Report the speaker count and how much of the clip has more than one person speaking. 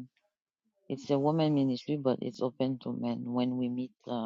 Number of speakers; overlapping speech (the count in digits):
1, no overlap